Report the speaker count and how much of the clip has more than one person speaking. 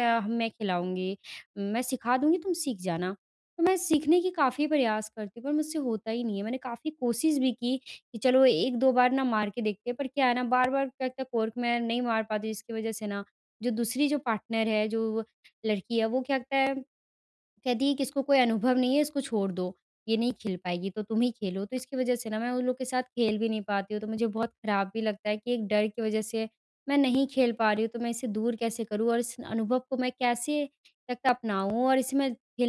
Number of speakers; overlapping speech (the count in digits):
1, no overlap